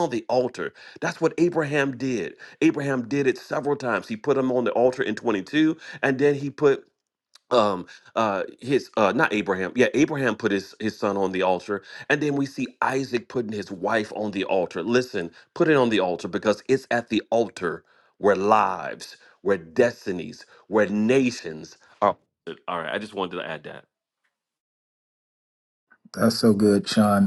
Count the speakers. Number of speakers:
2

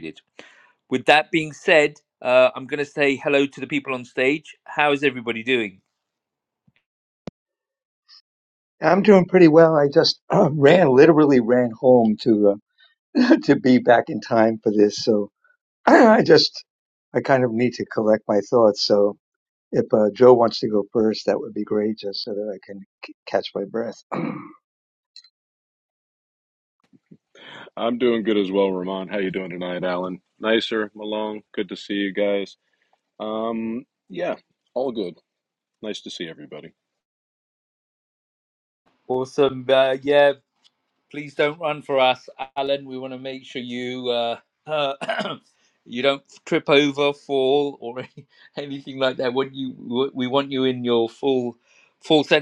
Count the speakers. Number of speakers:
3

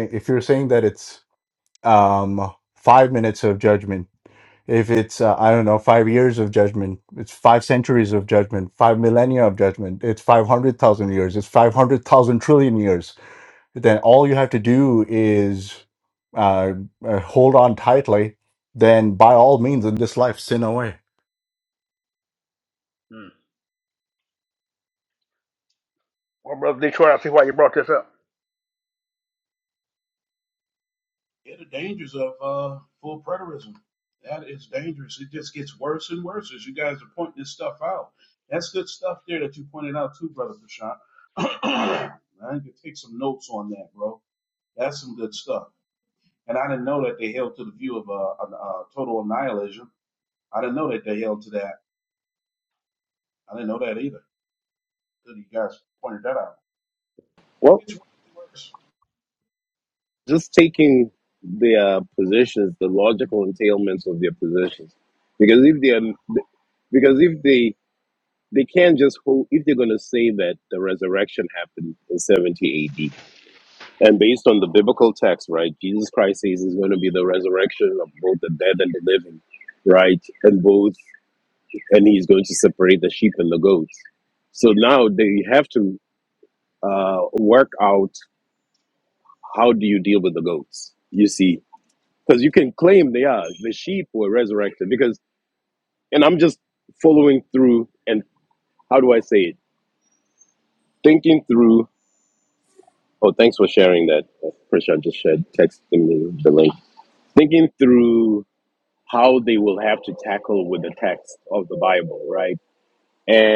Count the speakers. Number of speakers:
4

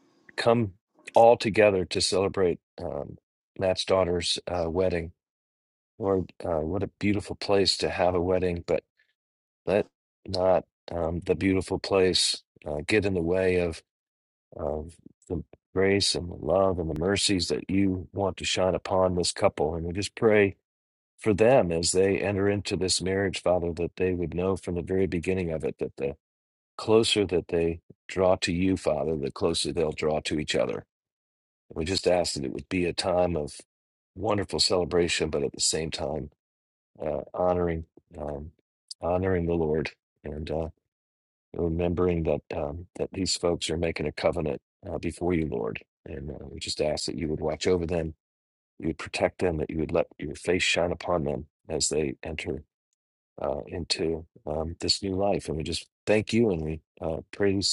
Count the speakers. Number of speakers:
1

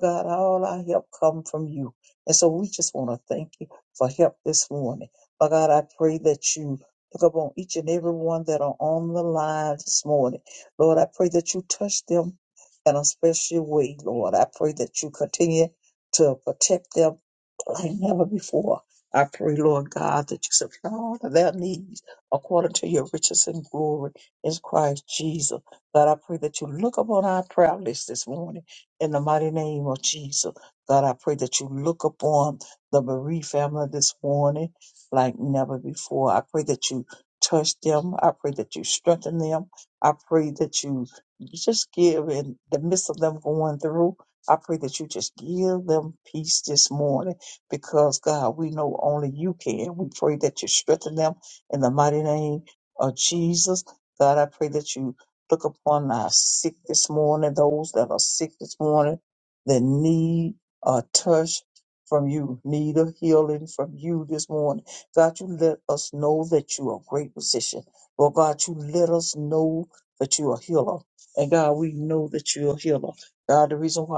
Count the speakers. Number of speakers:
1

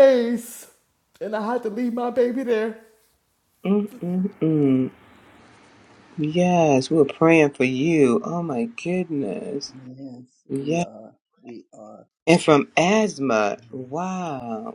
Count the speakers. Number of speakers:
3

